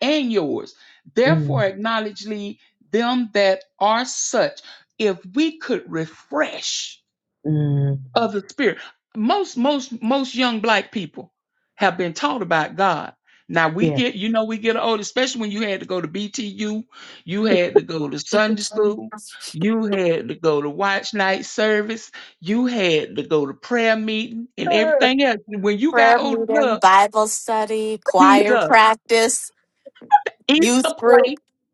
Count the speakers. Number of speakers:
three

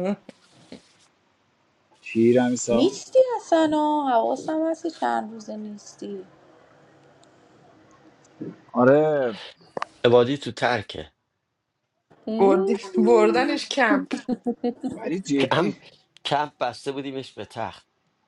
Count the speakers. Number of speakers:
four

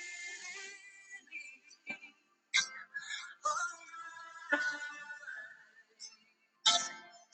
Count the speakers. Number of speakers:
zero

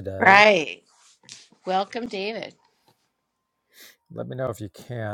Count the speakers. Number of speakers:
two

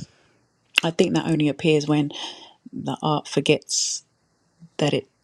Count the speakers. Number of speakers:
one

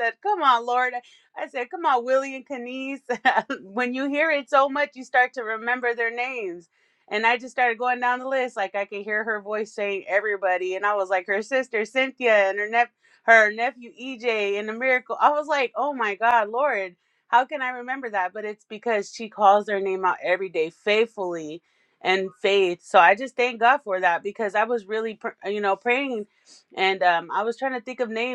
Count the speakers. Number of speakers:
one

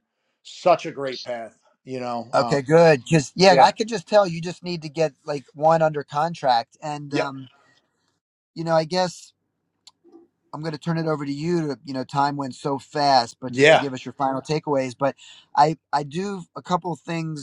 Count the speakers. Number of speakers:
two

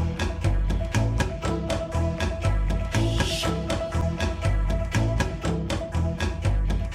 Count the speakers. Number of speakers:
zero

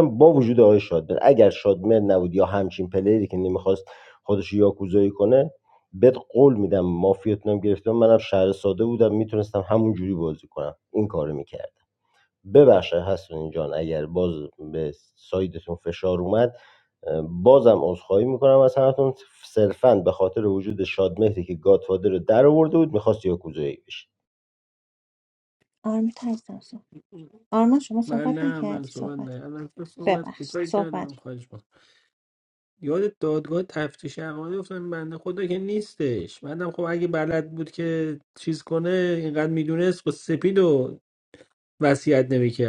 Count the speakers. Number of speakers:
three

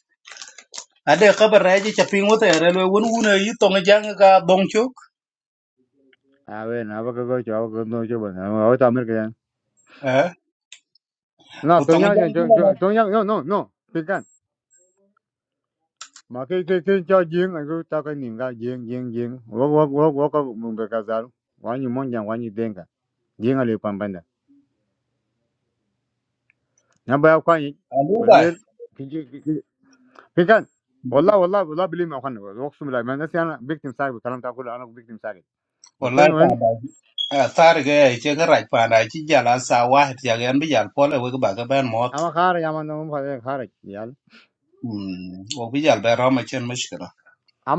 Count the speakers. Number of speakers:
two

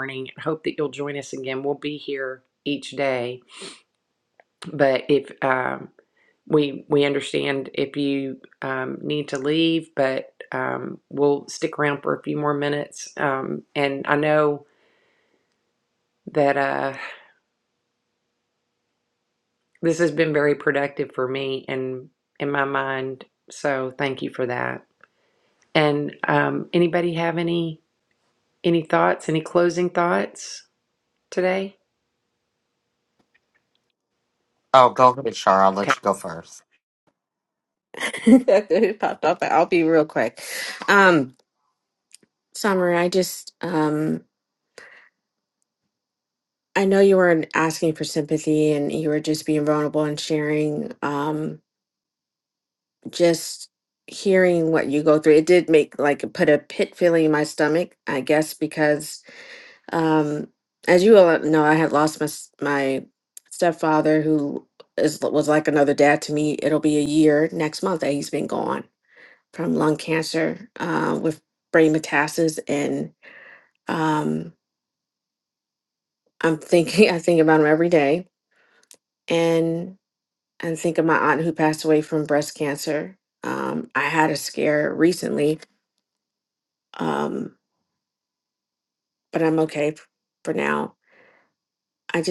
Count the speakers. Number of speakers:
three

